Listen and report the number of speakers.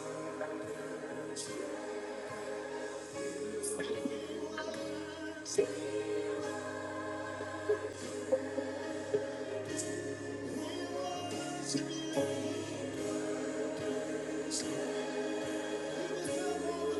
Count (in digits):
0